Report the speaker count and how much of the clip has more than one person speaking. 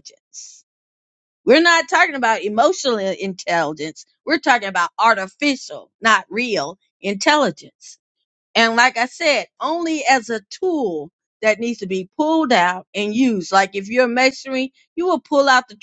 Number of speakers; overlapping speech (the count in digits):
1, no overlap